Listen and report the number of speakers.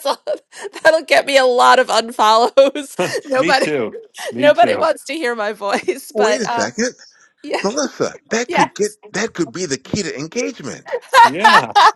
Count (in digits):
3